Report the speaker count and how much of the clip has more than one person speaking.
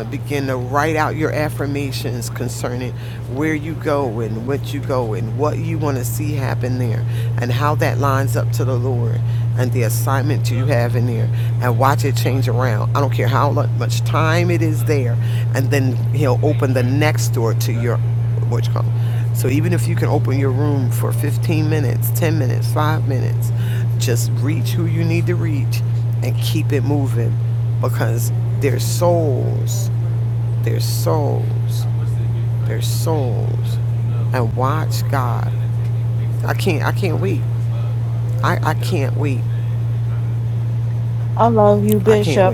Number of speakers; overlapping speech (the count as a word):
two, about 1%